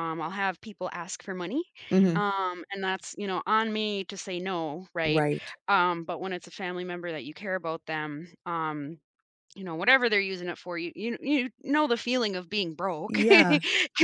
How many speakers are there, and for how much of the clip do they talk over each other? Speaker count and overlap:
two, about 5%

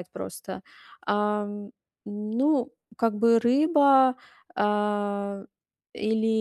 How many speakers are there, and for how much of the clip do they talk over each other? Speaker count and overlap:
one, no overlap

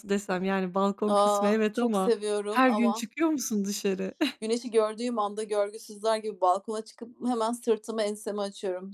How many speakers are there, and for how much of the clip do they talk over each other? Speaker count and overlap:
two, about 17%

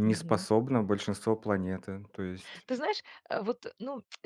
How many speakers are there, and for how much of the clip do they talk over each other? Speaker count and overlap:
two, about 9%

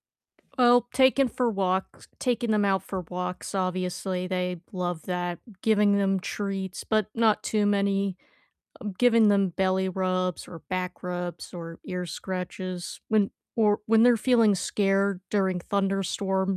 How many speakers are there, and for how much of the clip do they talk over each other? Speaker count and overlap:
one, no overlap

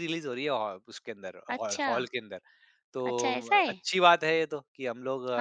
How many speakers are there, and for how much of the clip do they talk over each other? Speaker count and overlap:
two, about 12%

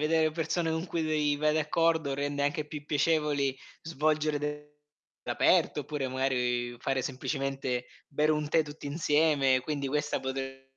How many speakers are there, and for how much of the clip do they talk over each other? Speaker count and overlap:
one, no overlap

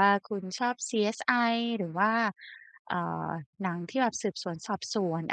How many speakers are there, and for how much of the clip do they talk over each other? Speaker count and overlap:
one, no overlap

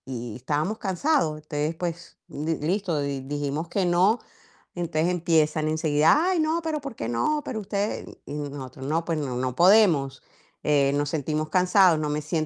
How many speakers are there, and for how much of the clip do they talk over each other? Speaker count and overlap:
one, no overlap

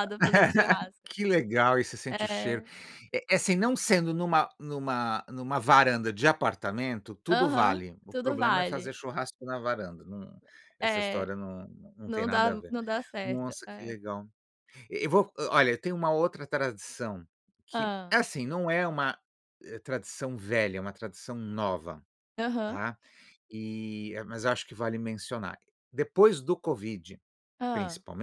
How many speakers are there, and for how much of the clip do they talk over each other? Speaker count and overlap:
two, about 15%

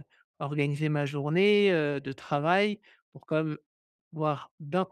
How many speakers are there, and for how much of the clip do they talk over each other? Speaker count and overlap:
one, no overlap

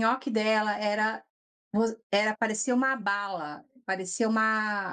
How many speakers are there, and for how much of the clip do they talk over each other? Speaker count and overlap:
one, no overlap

